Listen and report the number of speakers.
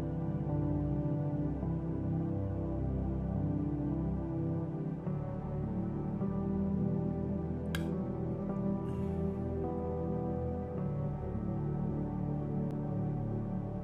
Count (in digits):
0